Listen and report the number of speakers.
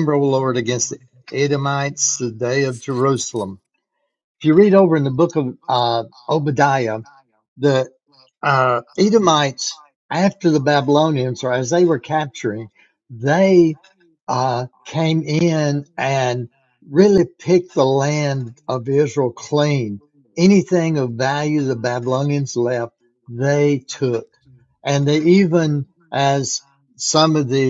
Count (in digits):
1